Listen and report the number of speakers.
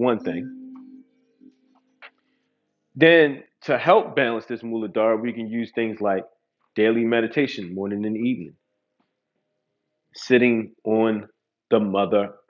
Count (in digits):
1